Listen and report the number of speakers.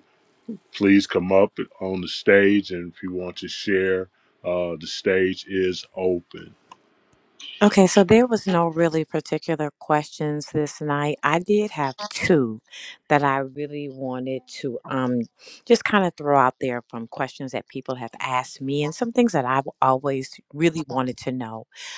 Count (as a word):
two